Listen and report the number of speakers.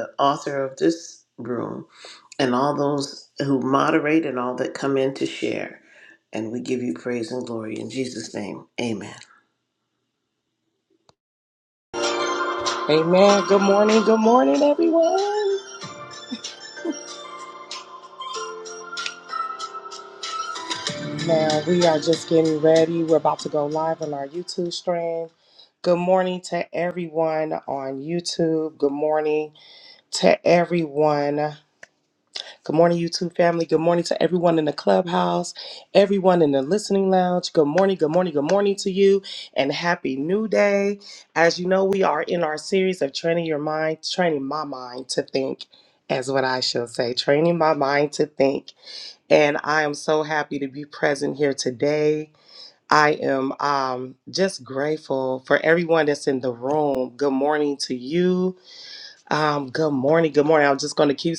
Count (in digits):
2